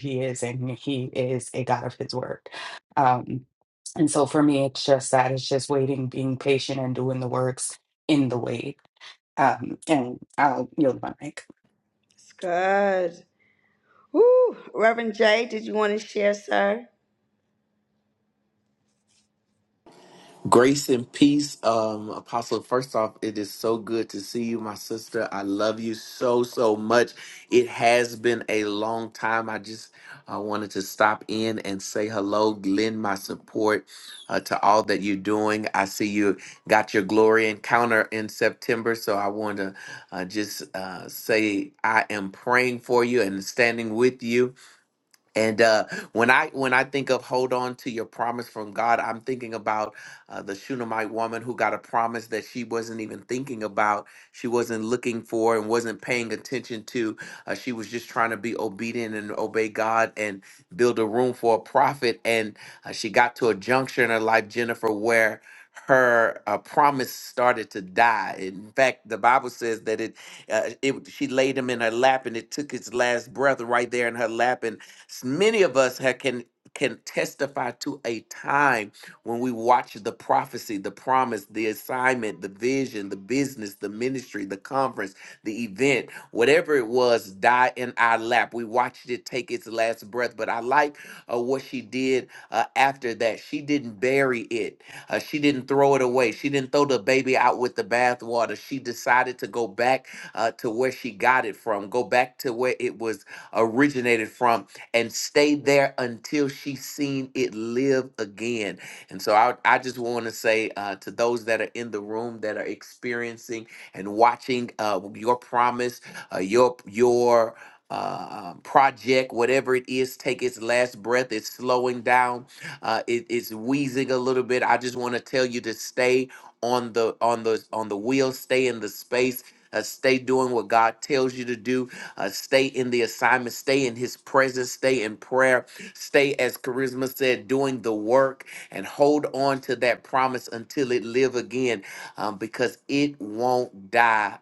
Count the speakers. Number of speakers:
three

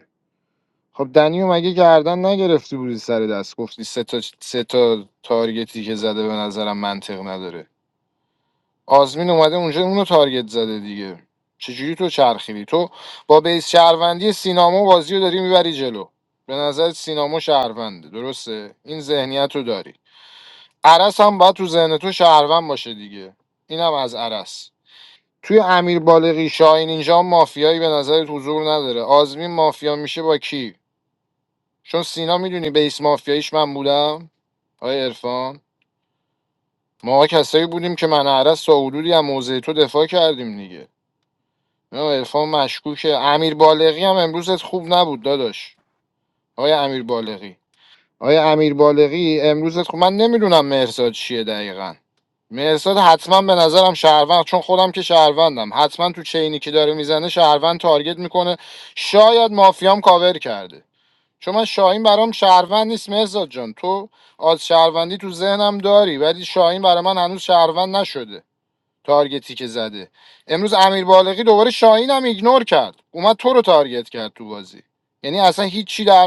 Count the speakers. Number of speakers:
one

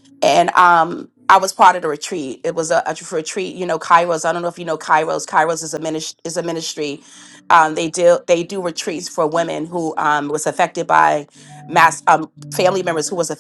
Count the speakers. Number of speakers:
one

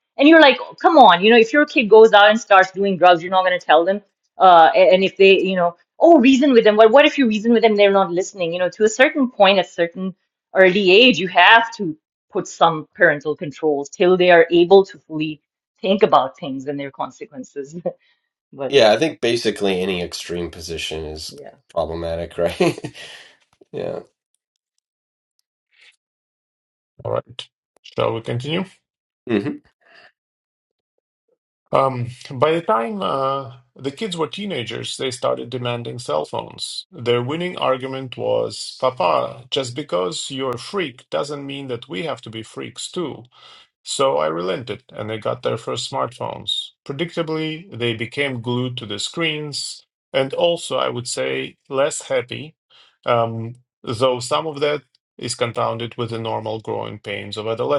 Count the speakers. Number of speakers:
three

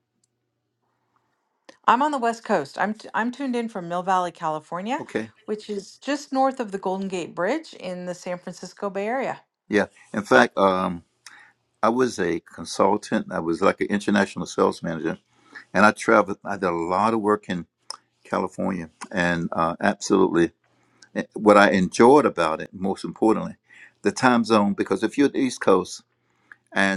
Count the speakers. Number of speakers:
two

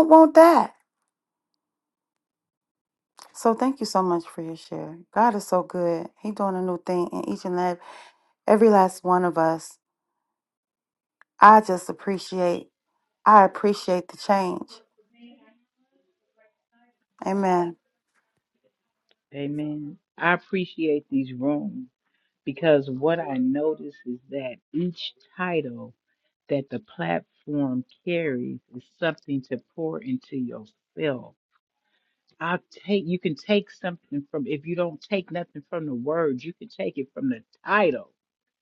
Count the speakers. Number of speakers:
two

